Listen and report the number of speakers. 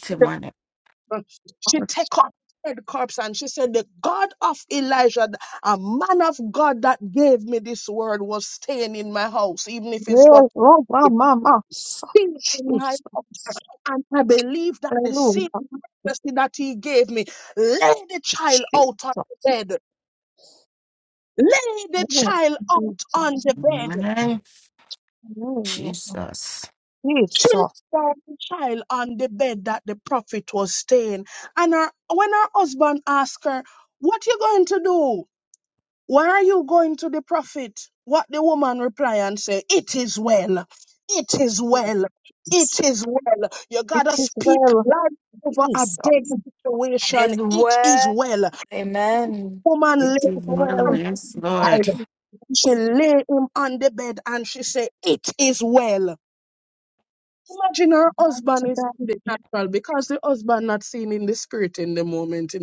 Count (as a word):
four